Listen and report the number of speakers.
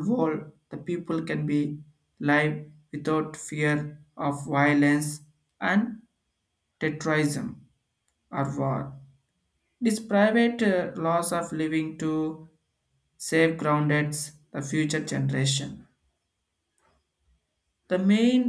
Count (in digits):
1